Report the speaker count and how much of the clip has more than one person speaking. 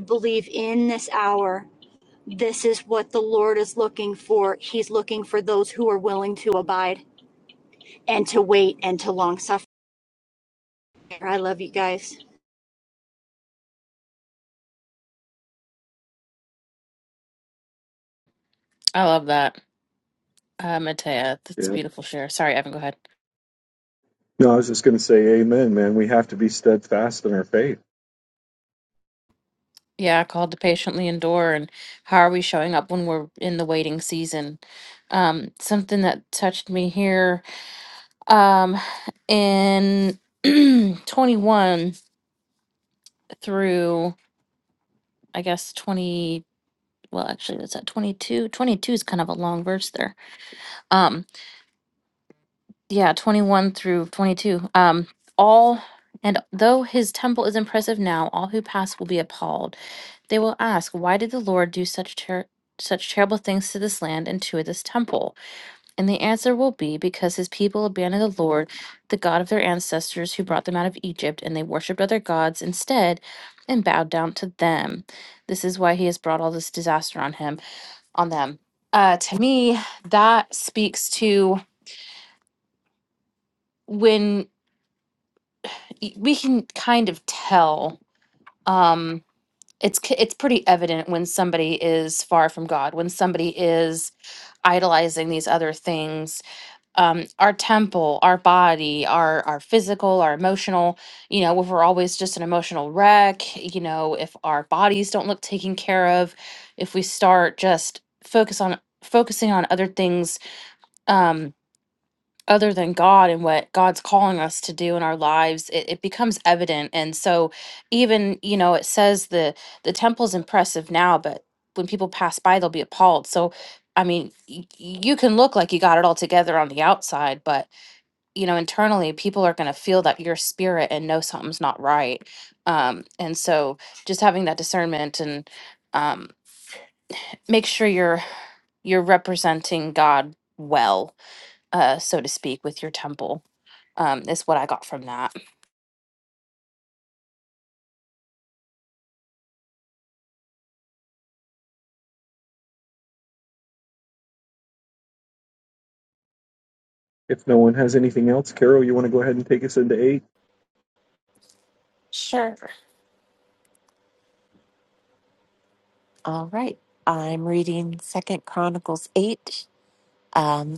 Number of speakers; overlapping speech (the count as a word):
four, under 1%